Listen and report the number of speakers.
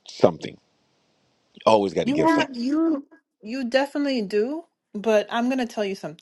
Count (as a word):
two